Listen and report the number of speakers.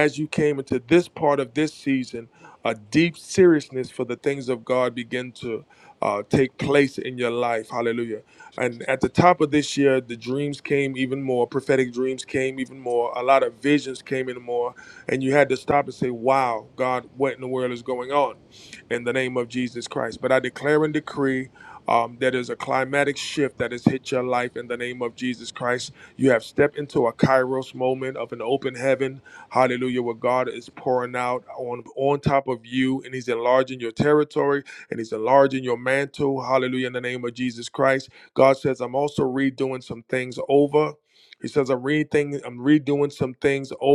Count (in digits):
1